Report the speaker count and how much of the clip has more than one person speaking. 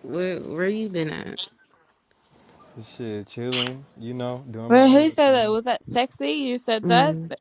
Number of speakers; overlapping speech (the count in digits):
3, about 17%